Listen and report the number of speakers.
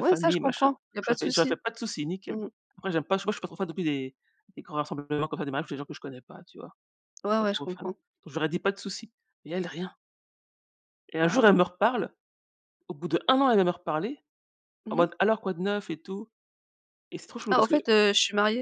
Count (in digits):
2